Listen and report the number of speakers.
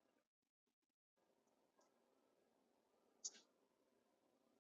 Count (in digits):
0